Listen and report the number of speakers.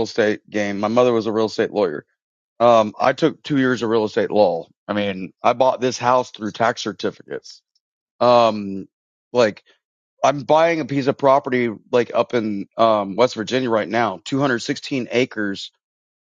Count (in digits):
1